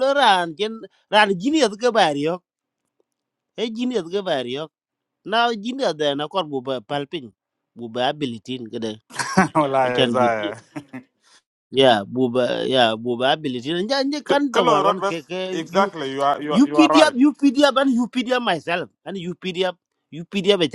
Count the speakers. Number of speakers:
two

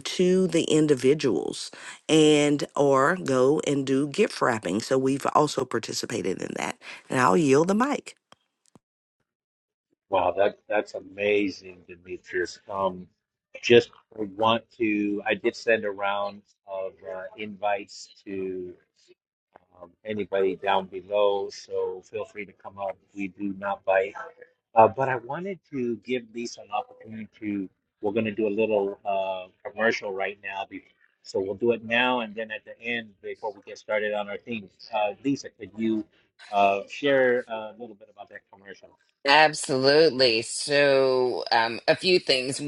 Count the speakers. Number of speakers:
three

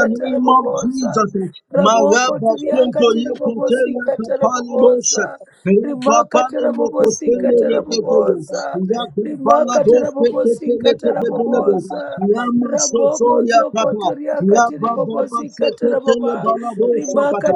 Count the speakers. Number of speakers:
two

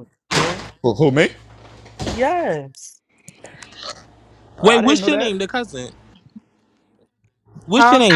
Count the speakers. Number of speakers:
three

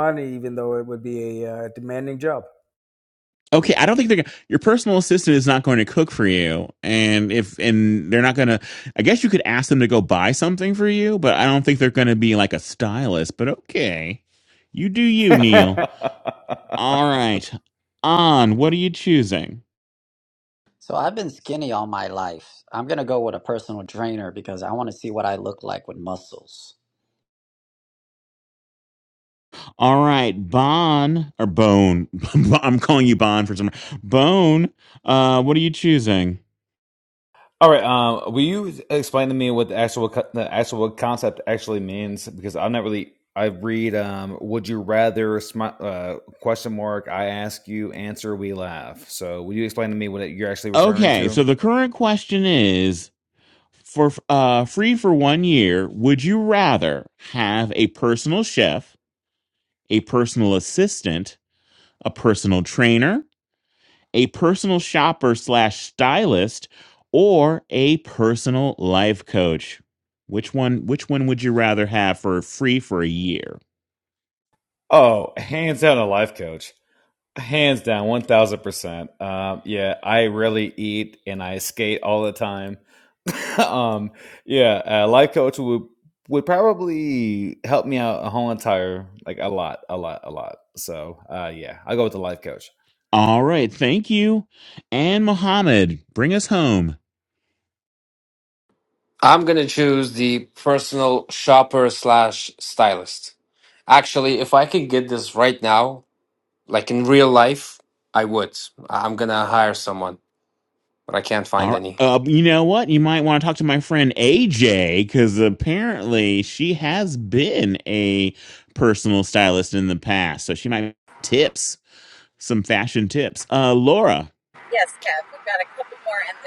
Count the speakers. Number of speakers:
six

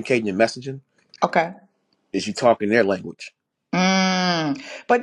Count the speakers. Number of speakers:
two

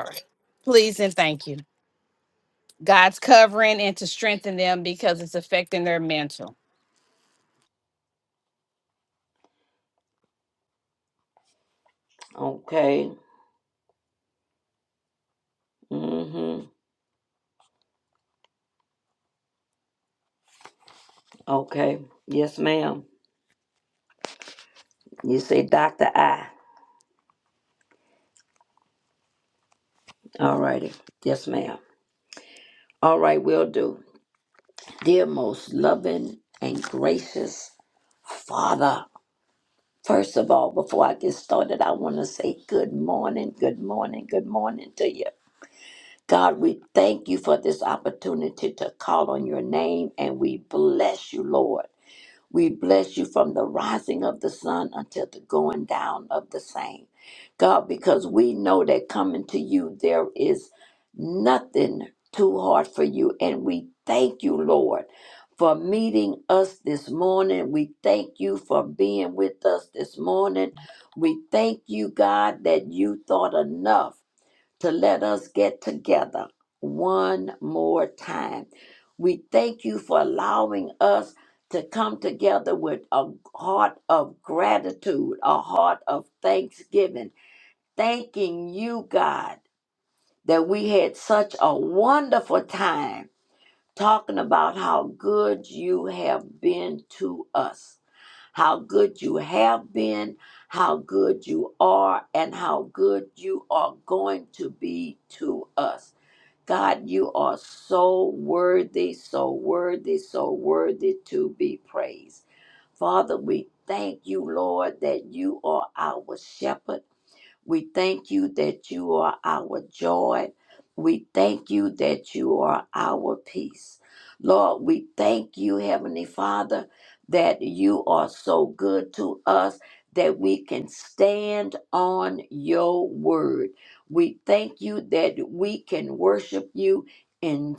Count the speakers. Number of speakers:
two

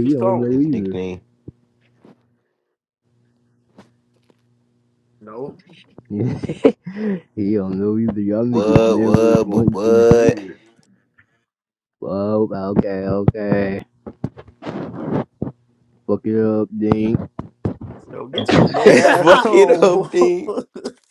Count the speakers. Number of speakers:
three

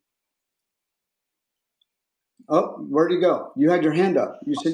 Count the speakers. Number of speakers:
one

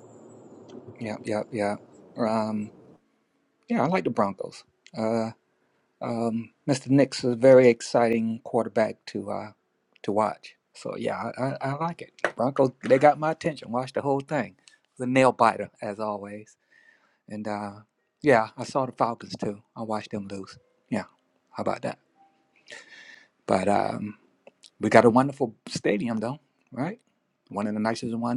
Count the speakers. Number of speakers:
one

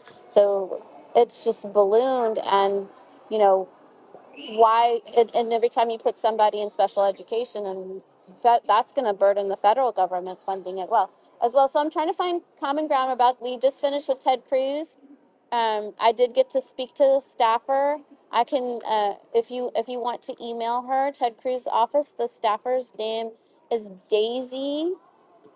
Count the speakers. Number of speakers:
one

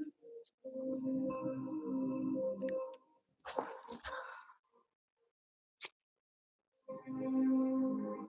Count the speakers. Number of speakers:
zero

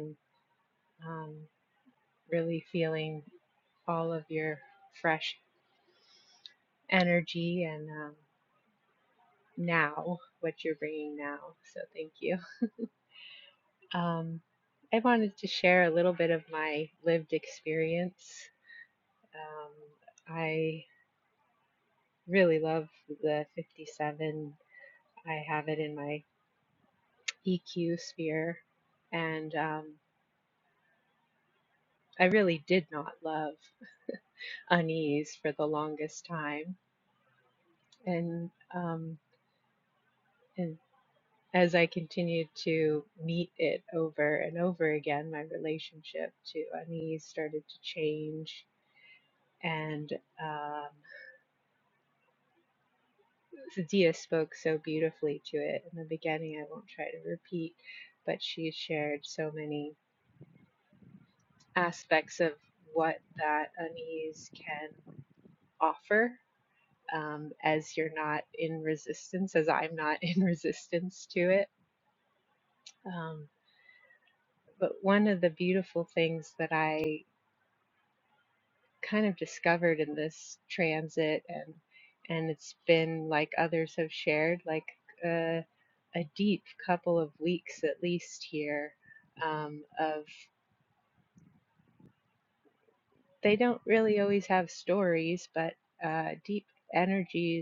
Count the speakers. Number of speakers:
one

